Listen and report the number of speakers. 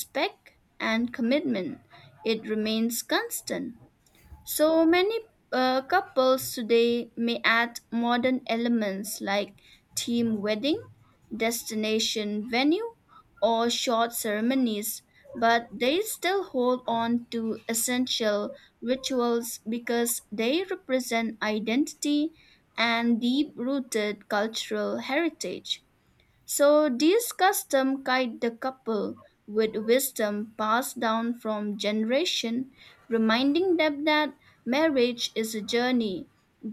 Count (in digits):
1